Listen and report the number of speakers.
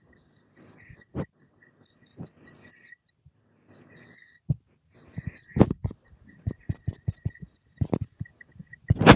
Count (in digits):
0